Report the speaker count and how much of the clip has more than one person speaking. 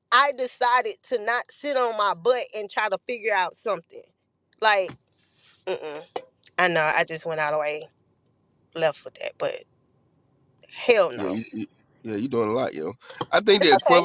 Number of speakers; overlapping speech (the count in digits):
2, about 5%